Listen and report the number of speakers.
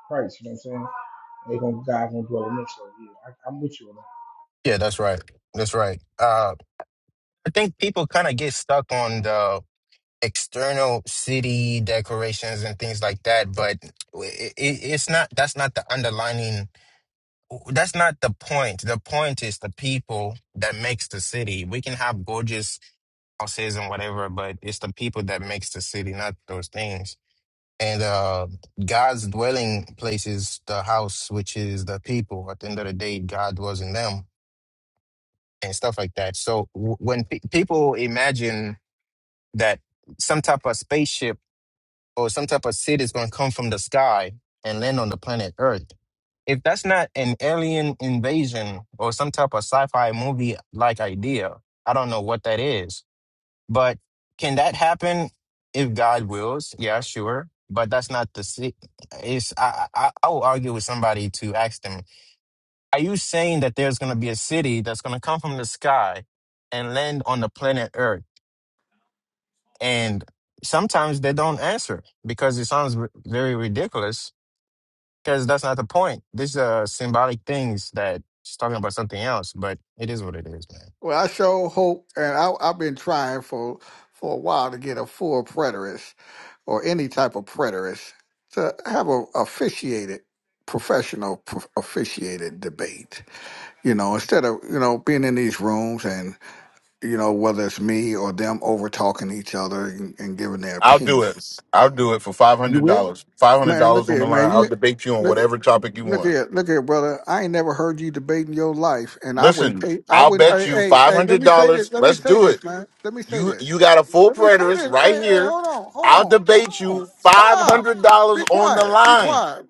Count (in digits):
4